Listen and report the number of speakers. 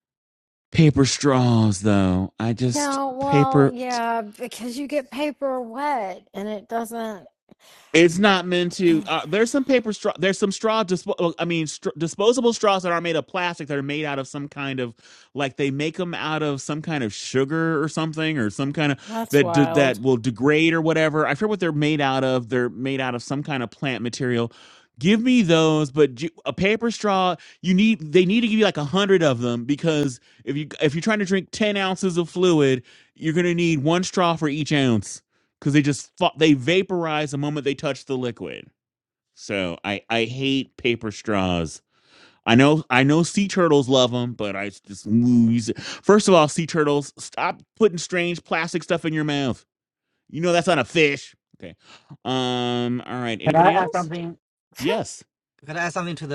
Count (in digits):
3